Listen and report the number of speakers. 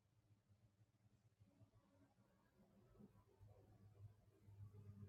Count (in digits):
0